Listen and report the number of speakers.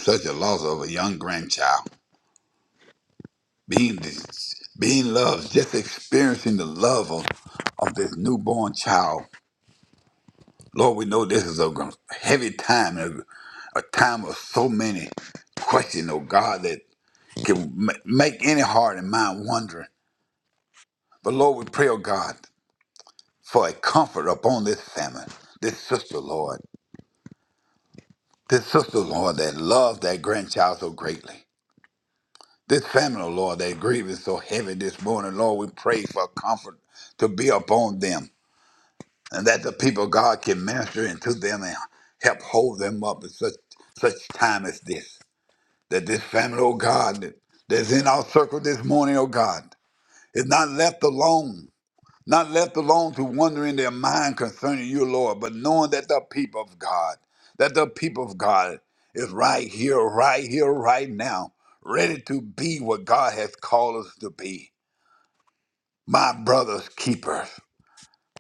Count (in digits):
1